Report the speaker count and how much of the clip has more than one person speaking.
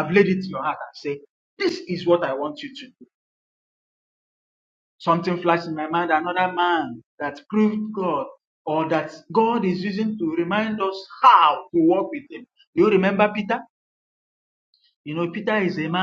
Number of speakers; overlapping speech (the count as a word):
one, no overlap